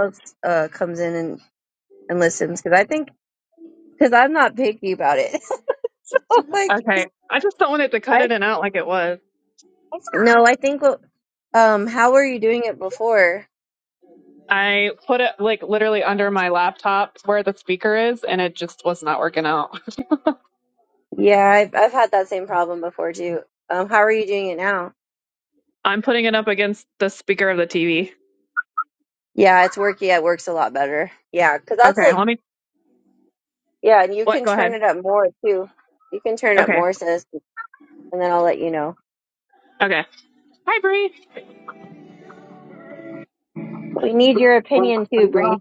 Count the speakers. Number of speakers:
2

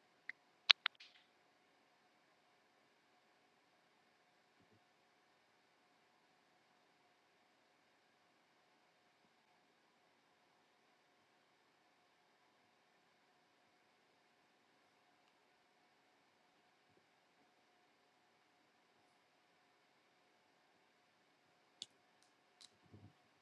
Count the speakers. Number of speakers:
0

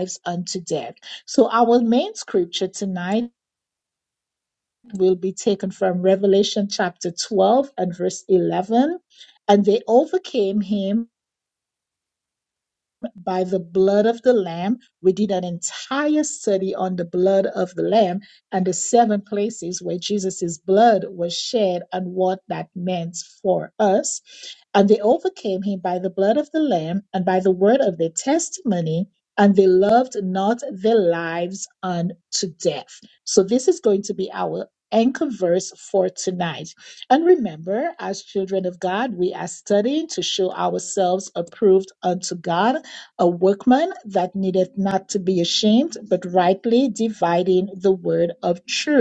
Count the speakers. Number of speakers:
1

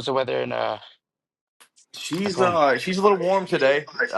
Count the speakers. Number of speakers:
2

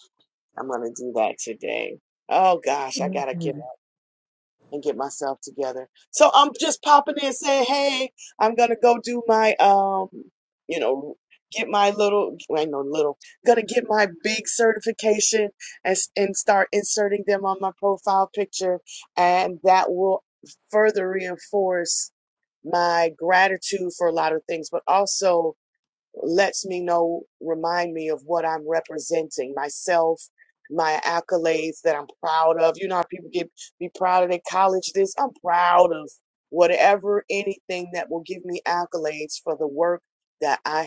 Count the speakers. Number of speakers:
1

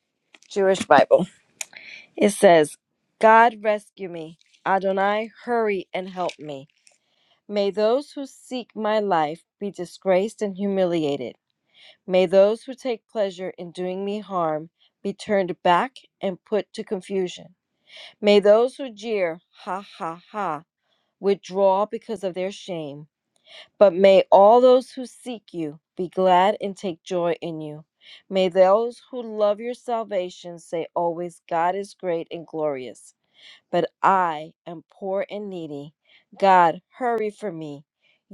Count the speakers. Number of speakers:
1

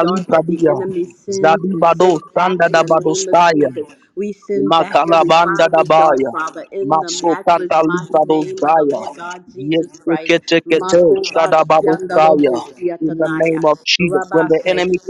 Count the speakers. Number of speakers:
2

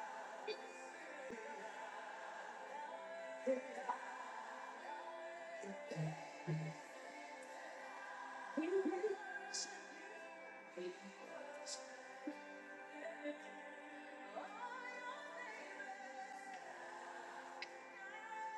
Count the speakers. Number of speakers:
0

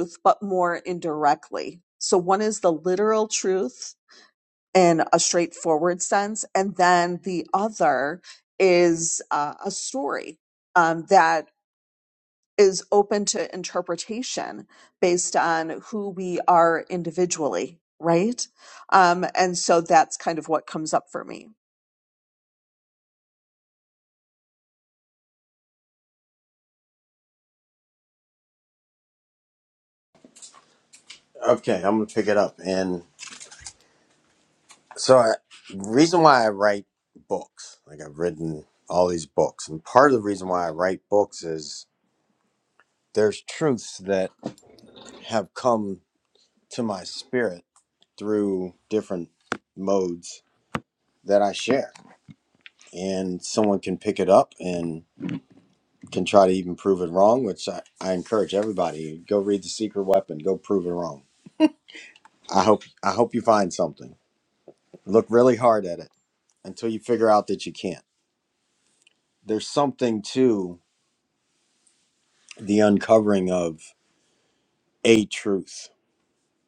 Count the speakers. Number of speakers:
2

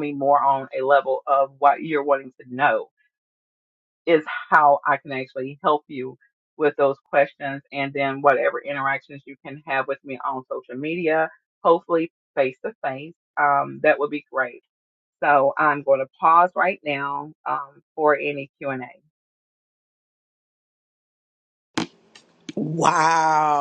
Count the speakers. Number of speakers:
2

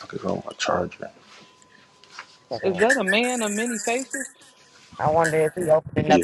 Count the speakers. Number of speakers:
3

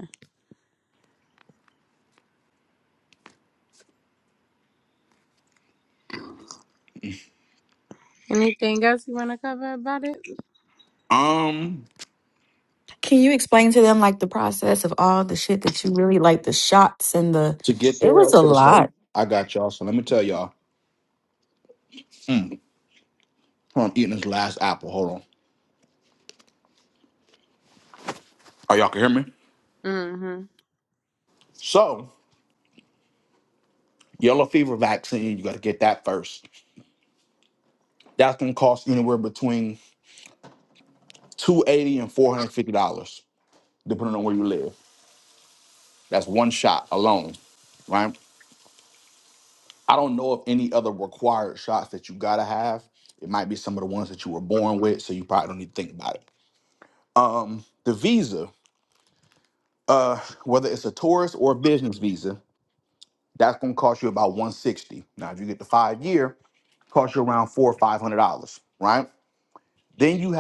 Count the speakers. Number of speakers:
3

